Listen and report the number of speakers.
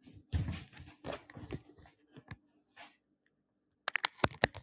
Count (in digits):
0